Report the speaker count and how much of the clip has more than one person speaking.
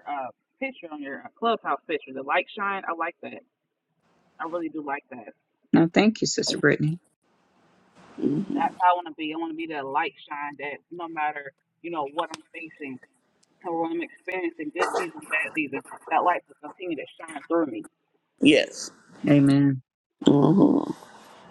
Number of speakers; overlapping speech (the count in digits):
3, under 1%